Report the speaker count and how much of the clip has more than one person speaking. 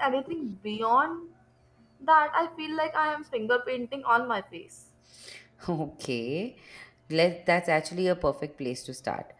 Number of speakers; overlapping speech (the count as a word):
two, no overlap